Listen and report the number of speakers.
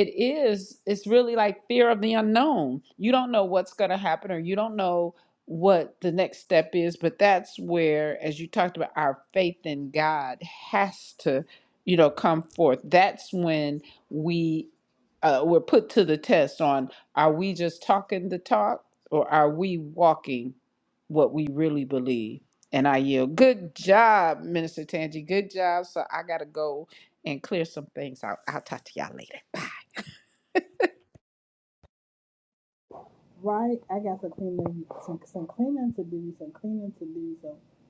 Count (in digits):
2